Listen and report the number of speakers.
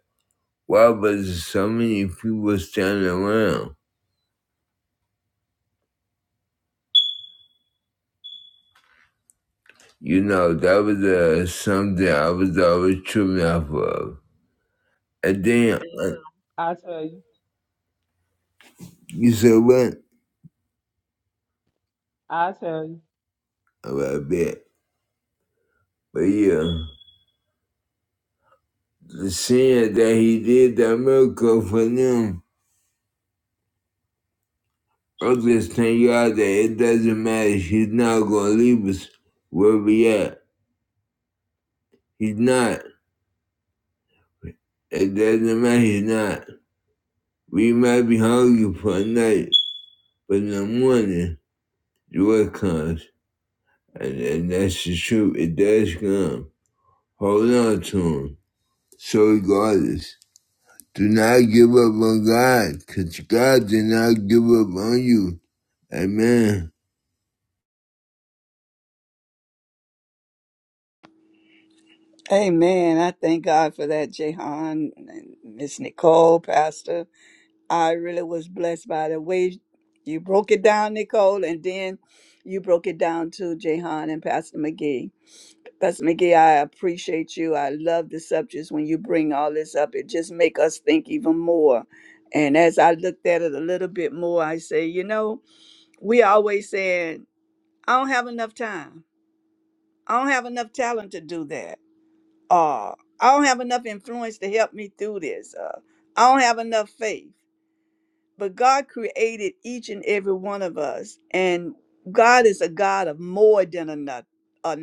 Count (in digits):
3